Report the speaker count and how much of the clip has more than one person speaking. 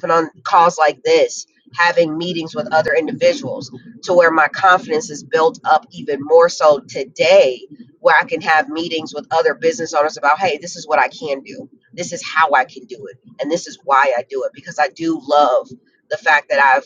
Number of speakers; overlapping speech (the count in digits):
1, no overlap